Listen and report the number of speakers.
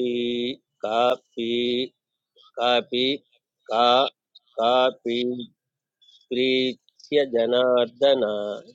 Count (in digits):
1